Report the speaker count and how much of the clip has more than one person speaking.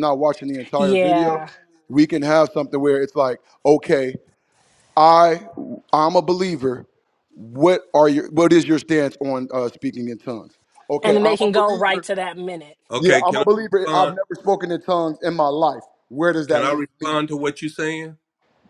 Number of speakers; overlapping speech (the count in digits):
3, about 16%